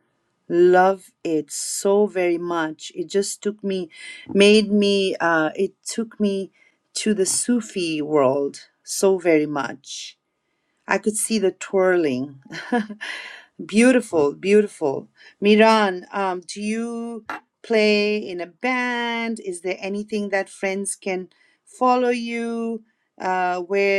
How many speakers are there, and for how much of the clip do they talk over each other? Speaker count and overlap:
1, no overlap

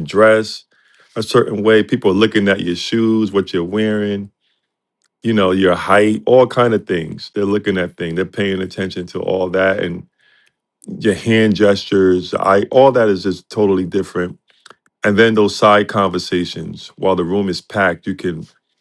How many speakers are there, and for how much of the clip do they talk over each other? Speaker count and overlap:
1, no overlap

